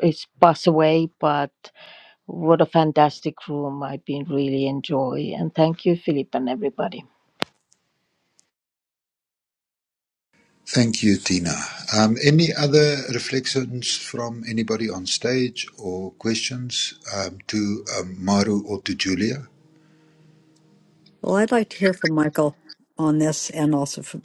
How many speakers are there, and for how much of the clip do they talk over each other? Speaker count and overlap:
3, no overlap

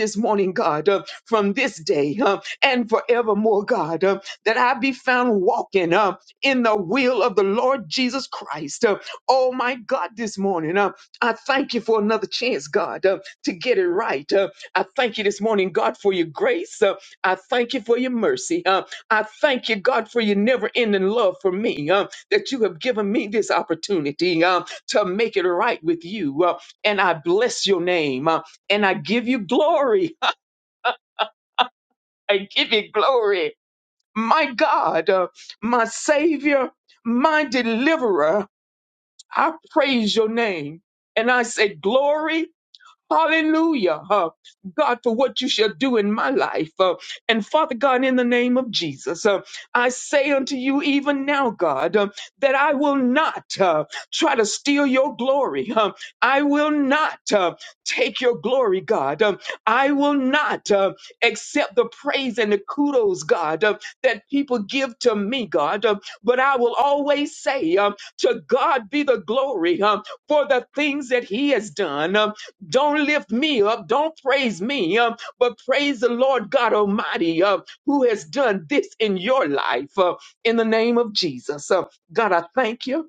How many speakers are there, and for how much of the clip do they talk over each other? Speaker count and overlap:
1, no overlap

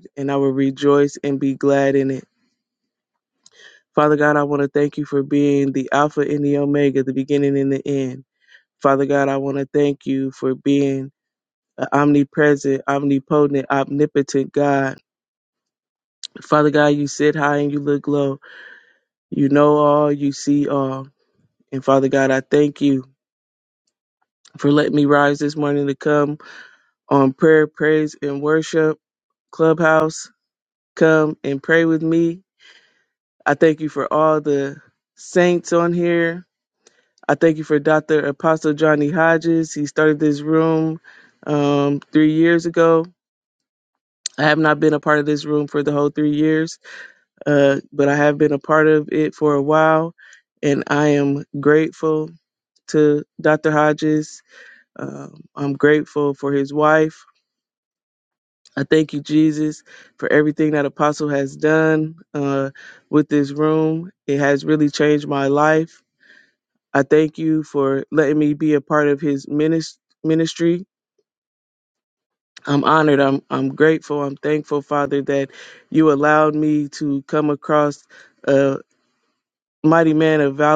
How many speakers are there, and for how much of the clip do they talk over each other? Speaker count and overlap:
1, no overlap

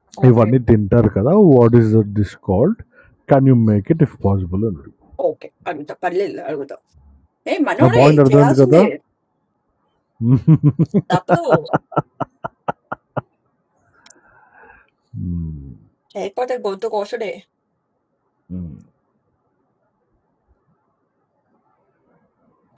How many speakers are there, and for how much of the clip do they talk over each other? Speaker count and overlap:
2, about 6%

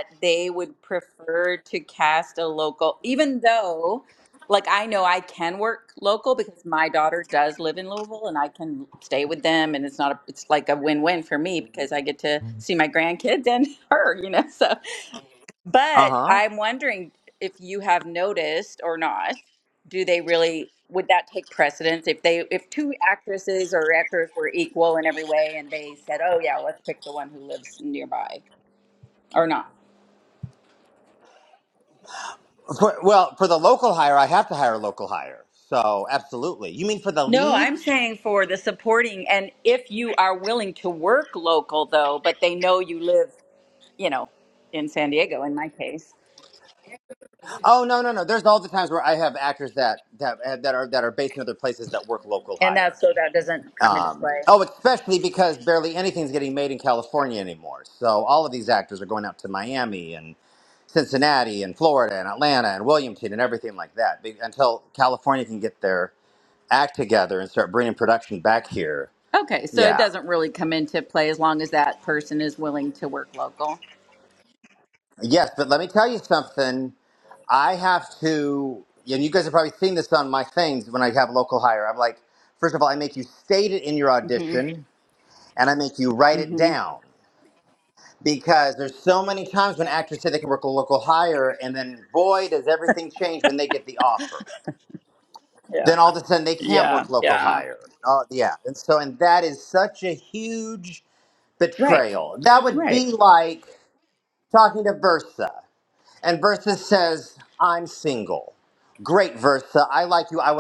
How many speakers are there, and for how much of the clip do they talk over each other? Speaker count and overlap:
2, about 4%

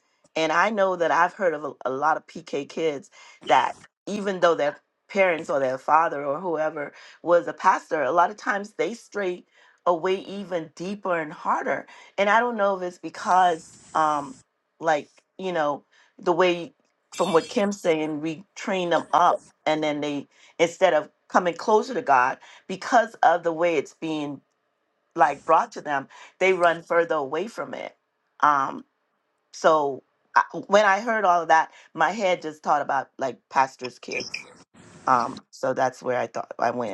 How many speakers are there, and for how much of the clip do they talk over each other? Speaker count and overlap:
1, no overlap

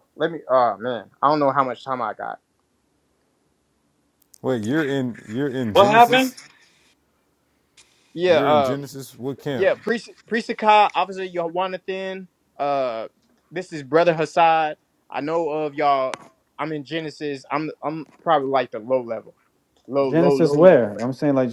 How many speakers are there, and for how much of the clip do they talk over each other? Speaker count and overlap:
3, about 8%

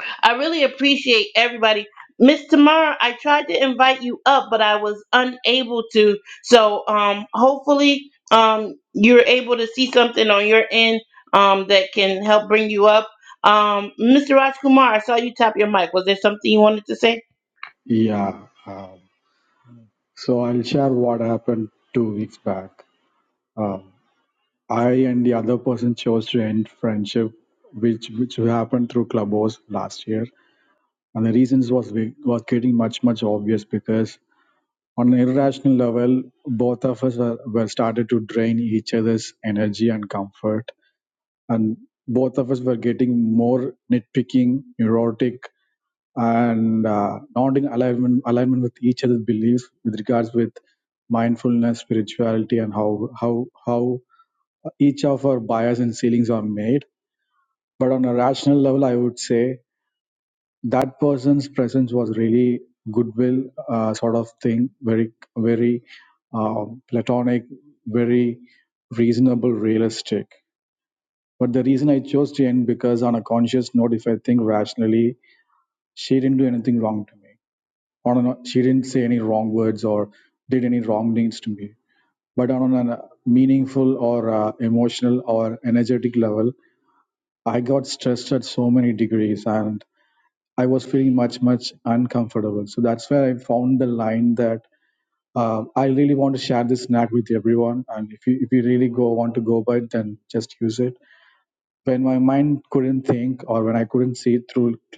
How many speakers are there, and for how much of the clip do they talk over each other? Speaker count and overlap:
2, no overlap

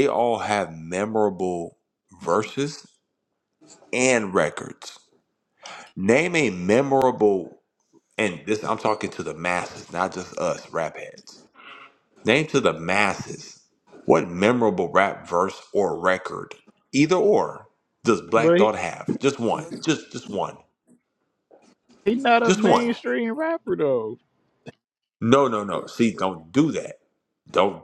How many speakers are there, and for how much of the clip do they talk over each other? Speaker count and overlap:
2, about 3%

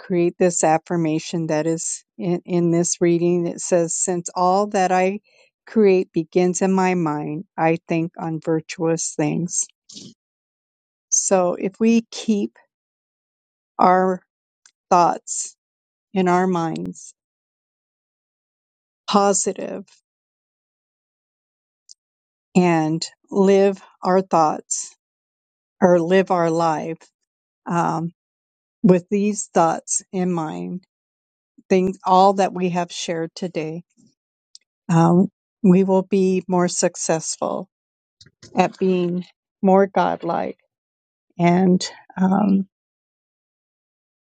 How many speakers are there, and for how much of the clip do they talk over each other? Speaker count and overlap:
1, no overlap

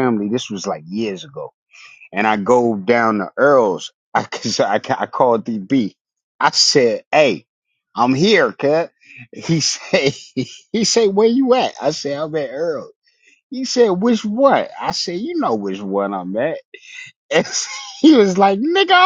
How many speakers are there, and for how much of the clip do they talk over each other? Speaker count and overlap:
1, no overlap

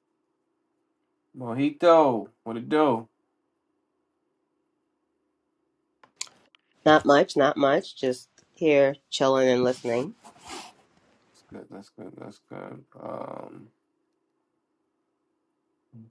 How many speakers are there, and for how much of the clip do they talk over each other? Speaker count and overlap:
2, no overlap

